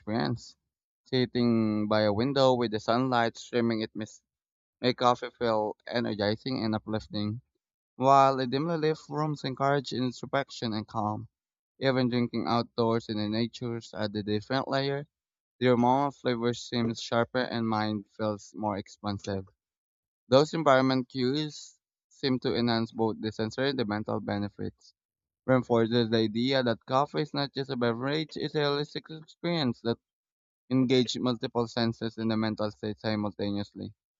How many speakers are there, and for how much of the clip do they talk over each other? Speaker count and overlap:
1, no overlap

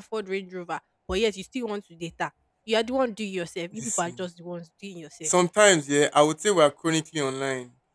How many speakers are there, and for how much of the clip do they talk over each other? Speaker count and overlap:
2, about 6%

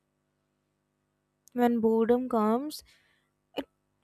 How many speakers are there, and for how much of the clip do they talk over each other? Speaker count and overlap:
1, no overlap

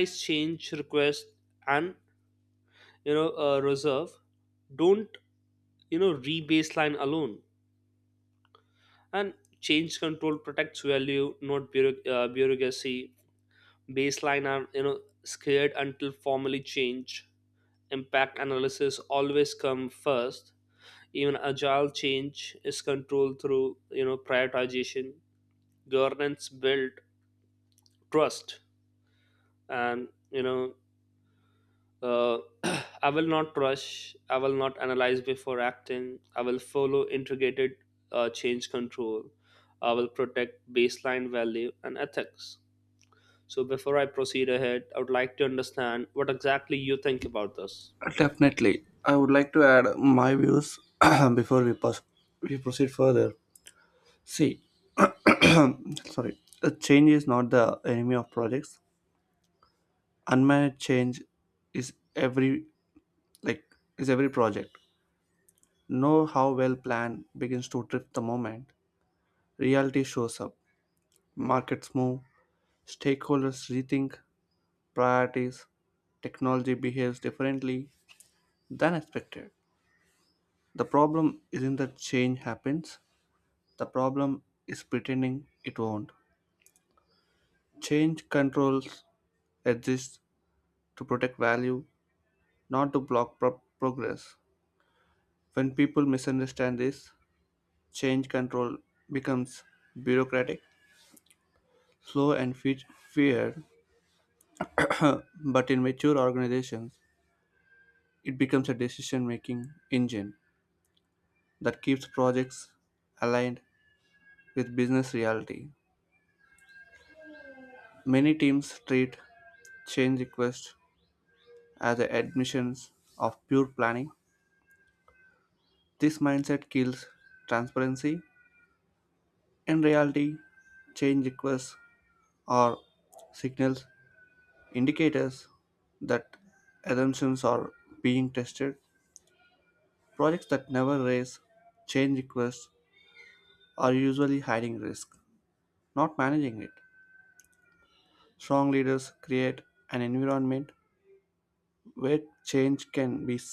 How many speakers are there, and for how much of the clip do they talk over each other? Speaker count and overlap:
2, no overlap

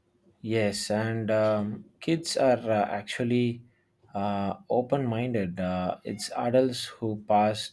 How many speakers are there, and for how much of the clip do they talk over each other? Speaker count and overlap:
1, no overlap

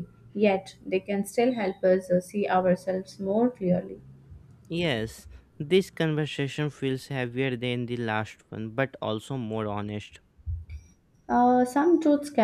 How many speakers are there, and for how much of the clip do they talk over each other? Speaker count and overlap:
2, no overlap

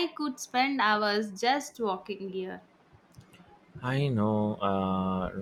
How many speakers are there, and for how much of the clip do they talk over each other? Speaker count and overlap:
2, no overlap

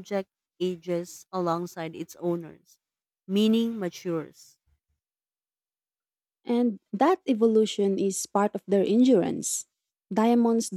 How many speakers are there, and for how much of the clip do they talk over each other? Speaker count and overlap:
2, no overlap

